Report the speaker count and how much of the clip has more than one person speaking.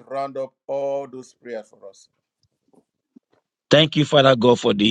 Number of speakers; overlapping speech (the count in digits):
2, no overlap